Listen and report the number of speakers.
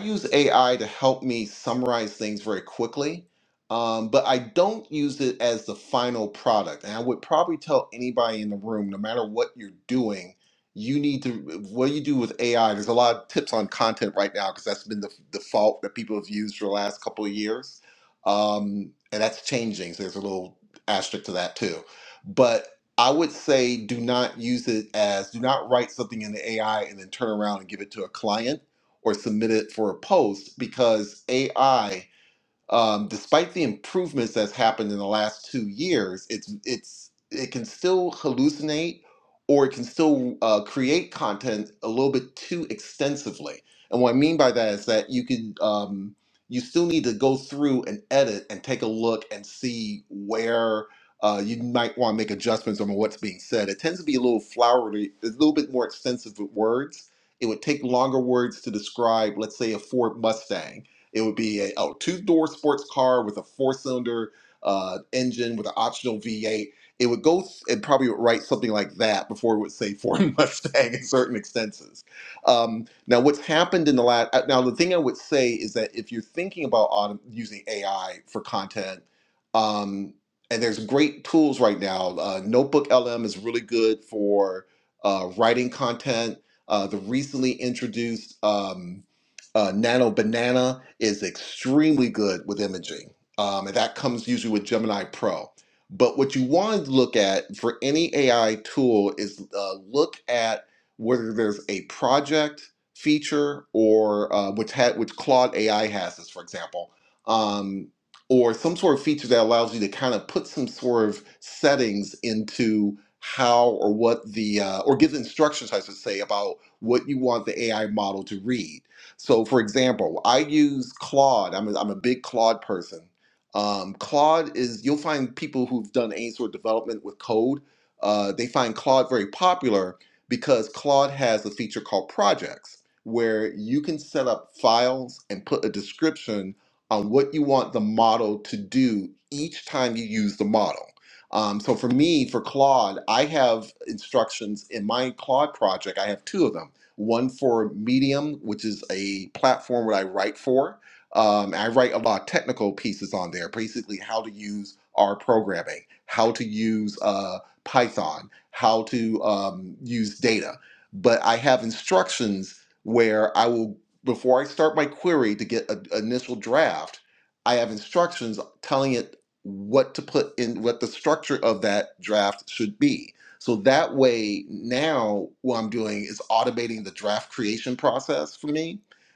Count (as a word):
one